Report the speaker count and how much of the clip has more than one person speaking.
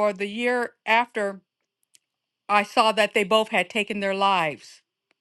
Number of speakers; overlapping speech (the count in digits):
1, no overlap